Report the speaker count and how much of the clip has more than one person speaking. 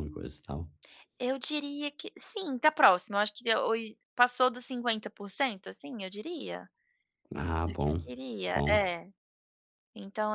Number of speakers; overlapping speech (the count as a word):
two, about 7%